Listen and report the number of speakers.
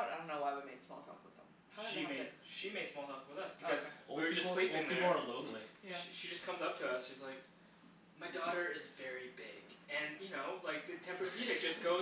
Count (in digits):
3